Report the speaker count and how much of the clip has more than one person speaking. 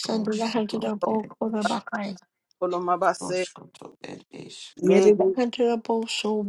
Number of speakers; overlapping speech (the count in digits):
3, about 36%